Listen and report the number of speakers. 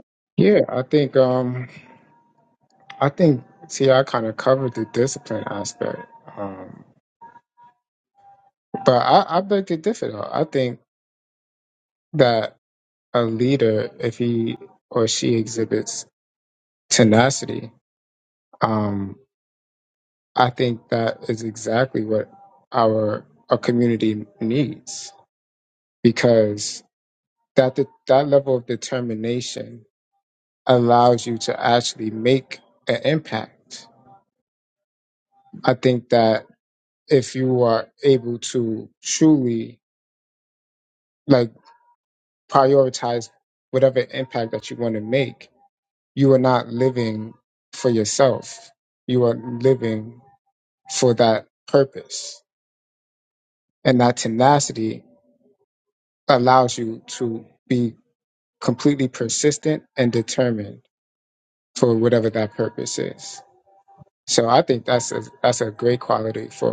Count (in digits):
1